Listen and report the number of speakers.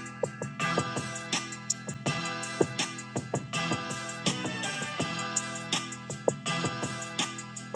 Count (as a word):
zero